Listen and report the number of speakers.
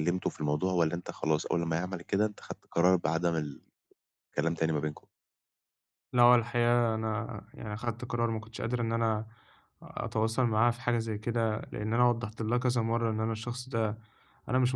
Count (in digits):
2